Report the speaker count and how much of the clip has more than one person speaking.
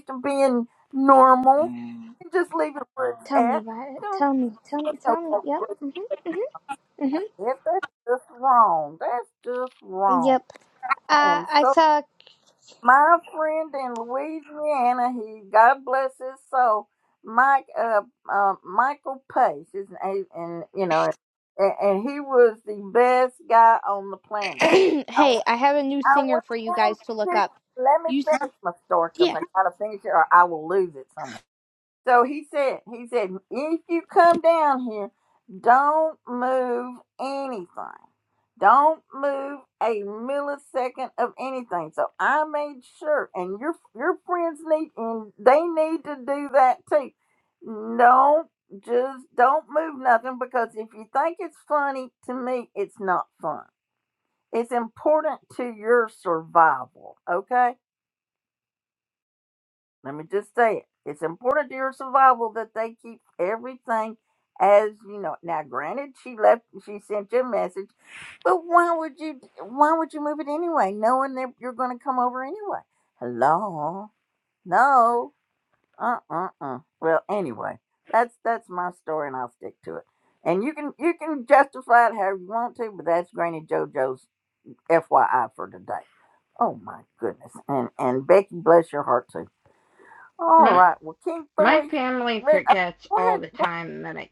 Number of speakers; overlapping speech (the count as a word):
three, about 6%